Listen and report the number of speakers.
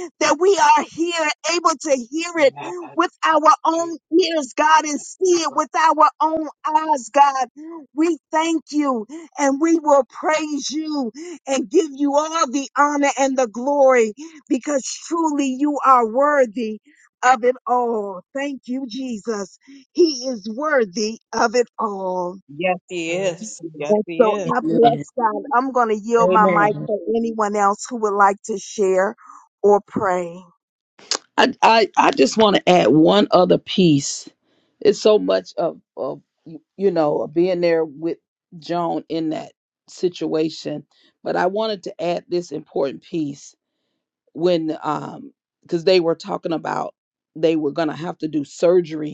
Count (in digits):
3